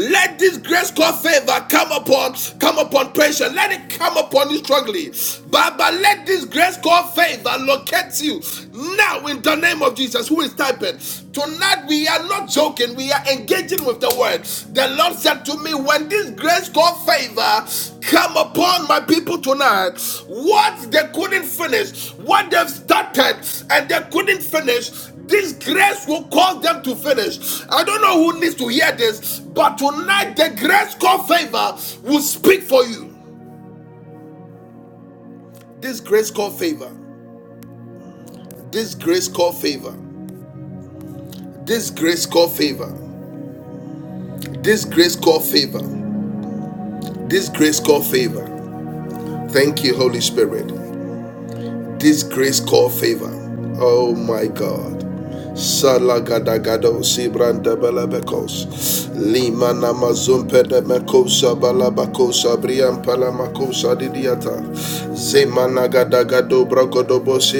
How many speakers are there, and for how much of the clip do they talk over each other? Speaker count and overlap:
1, no overlap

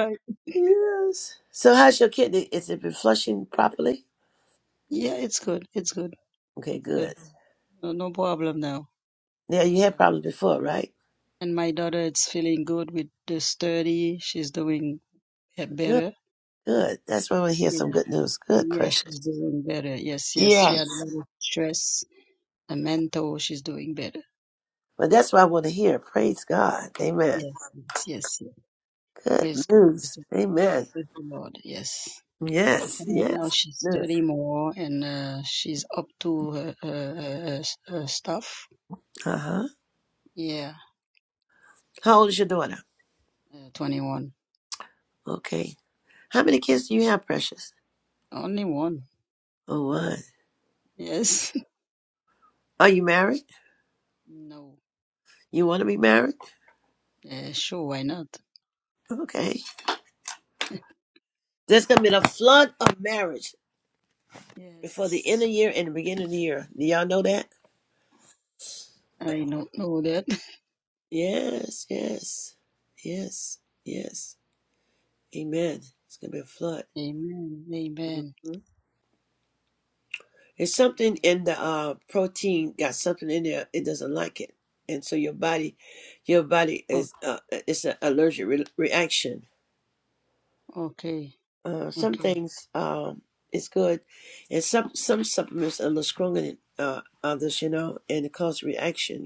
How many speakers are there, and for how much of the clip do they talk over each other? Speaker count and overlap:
2, about 4%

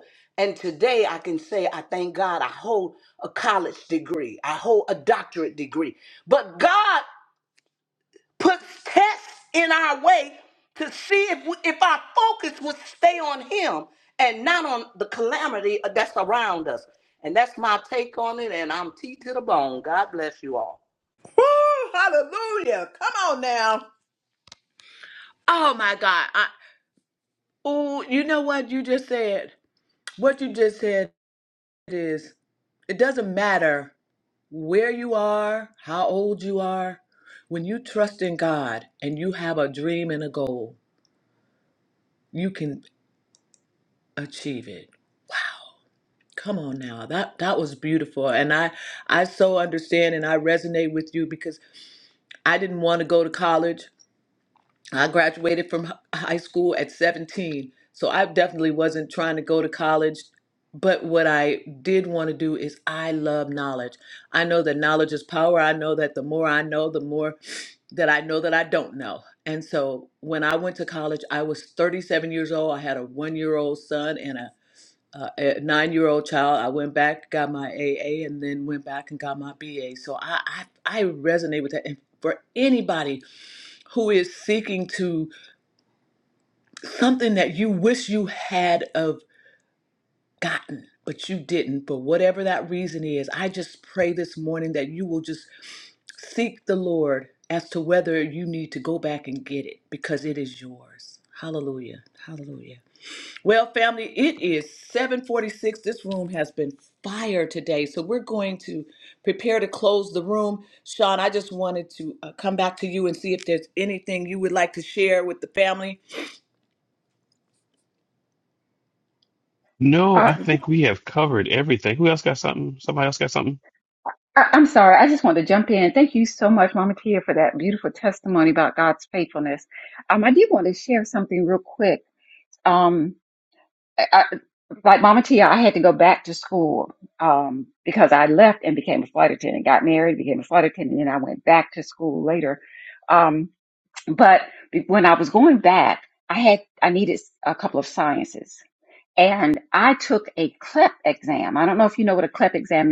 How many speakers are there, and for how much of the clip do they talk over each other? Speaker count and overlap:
4, under 1%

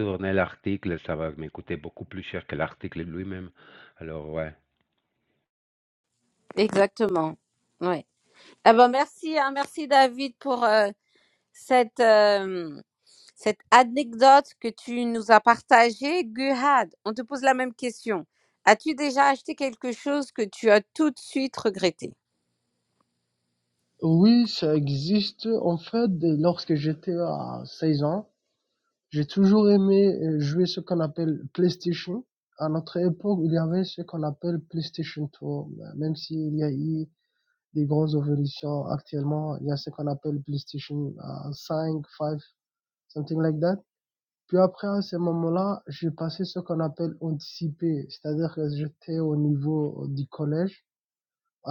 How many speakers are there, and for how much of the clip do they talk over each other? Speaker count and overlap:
3, no overlap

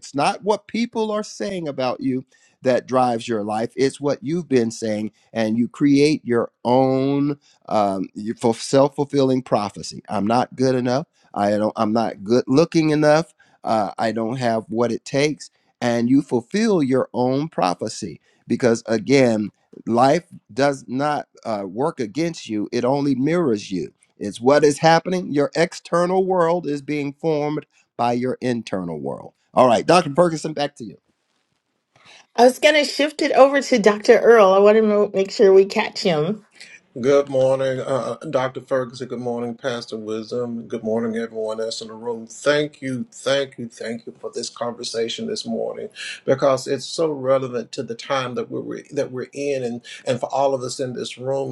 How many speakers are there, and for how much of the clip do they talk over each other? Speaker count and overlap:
3, no overlap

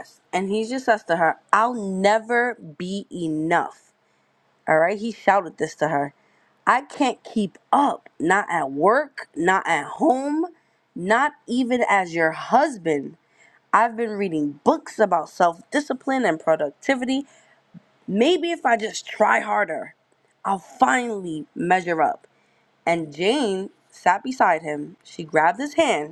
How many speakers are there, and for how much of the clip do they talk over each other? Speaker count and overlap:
1, no overlap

